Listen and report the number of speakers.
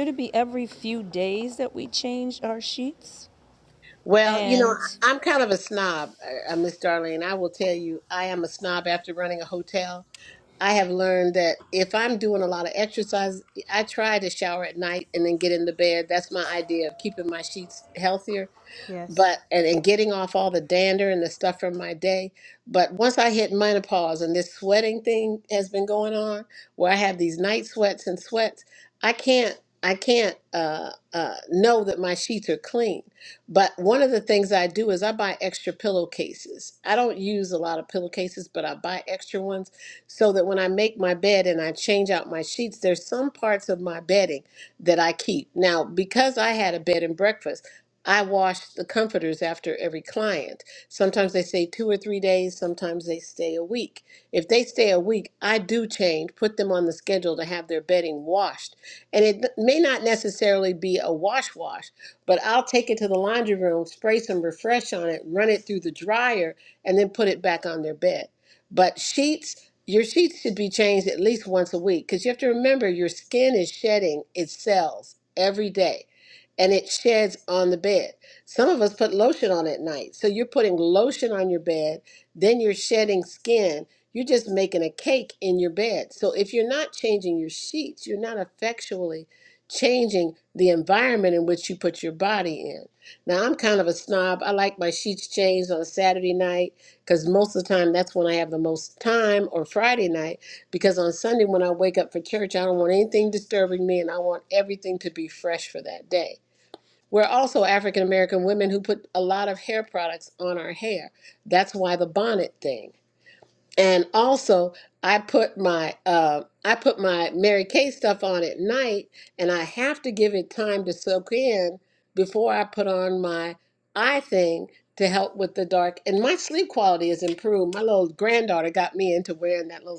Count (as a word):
two